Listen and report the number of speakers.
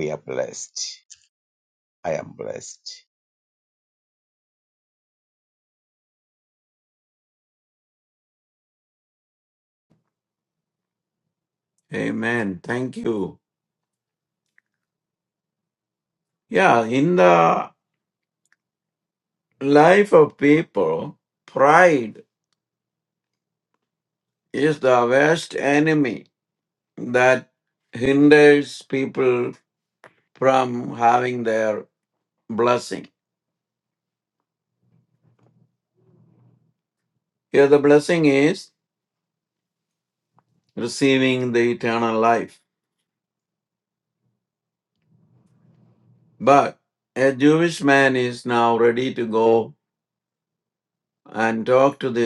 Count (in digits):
2